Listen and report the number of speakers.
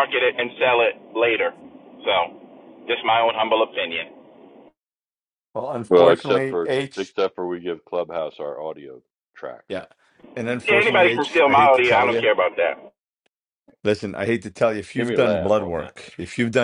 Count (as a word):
three